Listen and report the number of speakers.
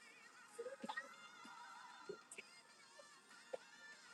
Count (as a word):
zero